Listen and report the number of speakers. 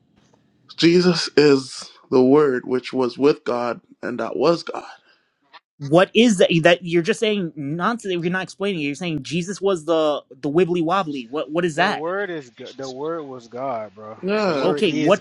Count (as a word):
three